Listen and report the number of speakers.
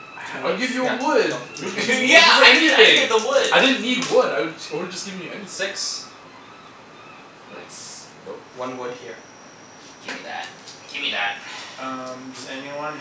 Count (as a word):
four